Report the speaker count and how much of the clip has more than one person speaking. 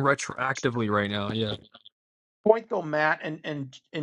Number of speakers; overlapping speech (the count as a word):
two, no overlap